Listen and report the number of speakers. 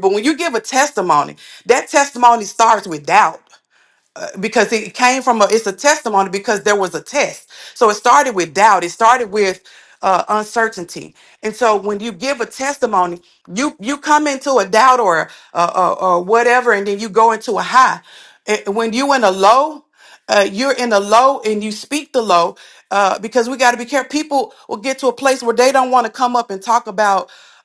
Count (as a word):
one